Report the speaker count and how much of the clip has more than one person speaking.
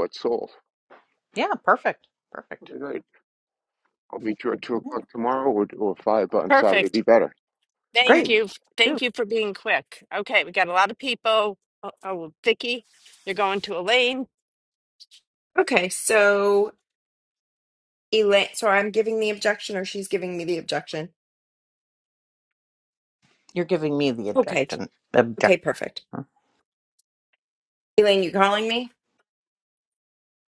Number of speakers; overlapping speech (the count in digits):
4, about 5%